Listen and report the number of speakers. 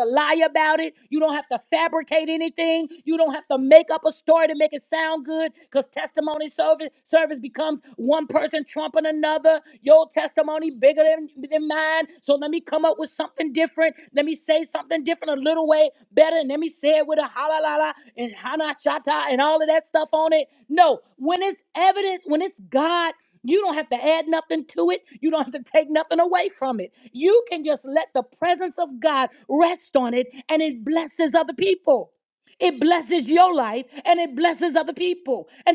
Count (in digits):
1